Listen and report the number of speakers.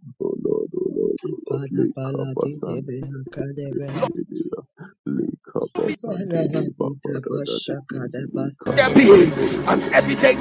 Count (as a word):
three